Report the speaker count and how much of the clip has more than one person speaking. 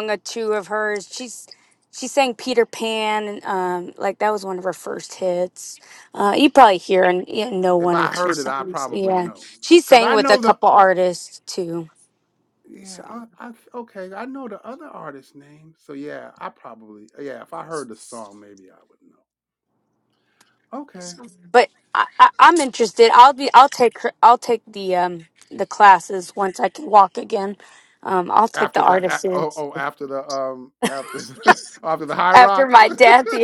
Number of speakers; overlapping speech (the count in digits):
2, about 11%